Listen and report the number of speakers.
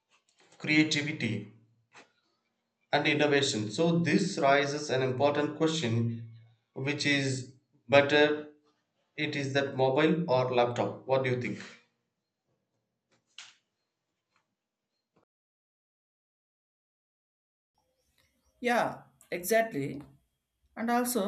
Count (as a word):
two